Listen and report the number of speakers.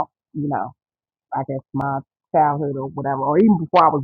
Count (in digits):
1